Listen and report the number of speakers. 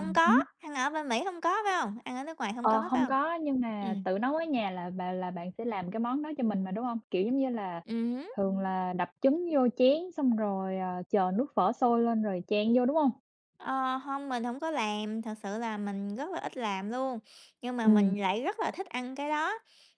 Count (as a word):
two